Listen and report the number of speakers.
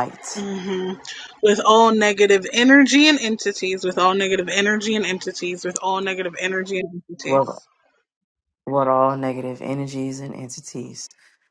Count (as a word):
two